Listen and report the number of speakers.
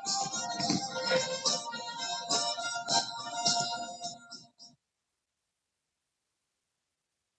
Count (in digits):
0